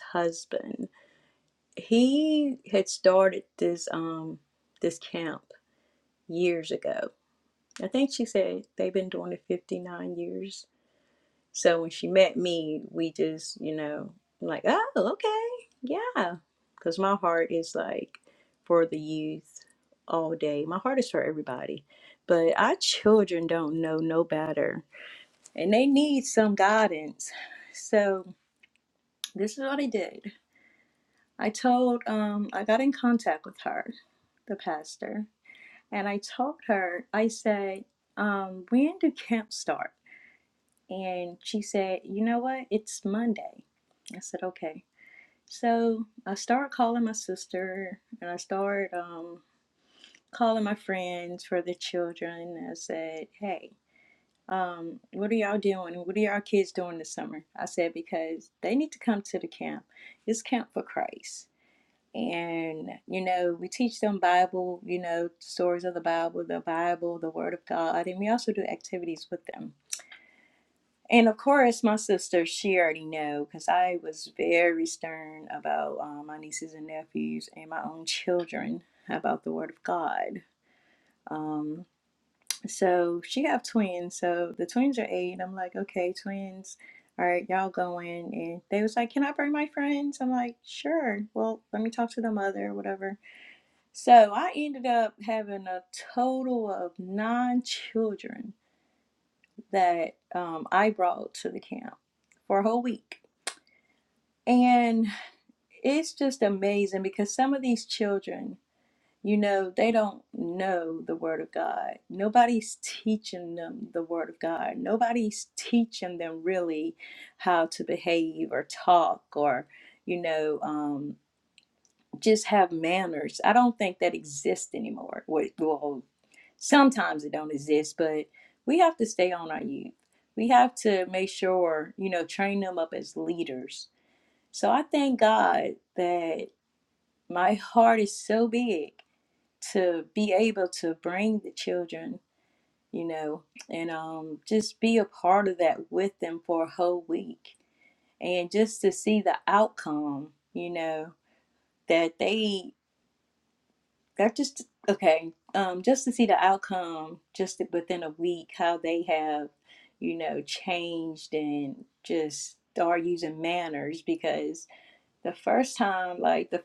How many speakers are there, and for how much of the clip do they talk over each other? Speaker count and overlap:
one, no overlap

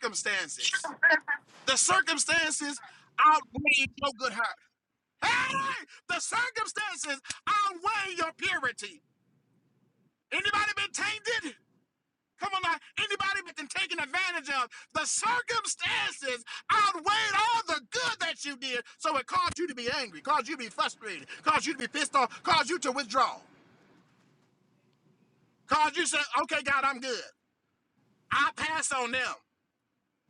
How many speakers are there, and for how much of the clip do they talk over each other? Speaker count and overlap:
one, no overlap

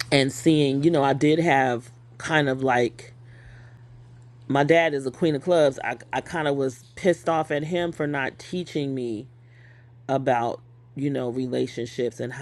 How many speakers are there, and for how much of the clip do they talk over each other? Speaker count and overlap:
one, no overlap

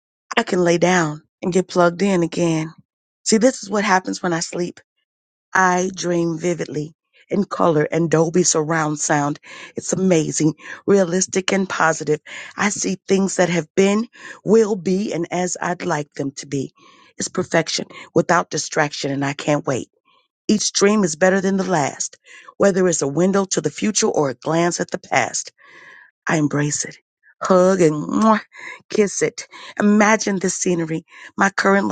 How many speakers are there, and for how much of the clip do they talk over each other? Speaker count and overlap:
one, no overlap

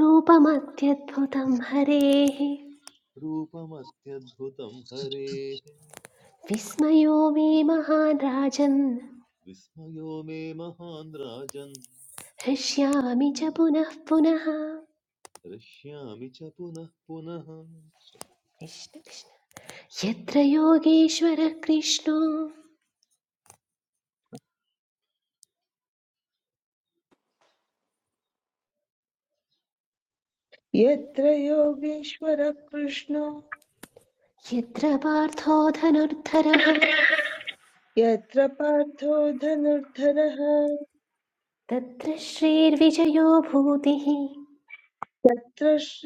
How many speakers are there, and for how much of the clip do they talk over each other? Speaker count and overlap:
three, no overlap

